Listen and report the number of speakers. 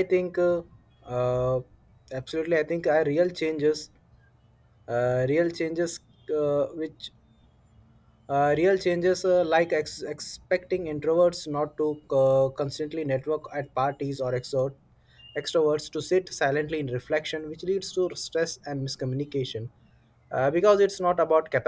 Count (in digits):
1